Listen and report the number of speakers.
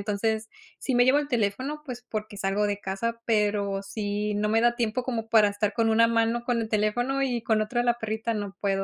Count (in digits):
1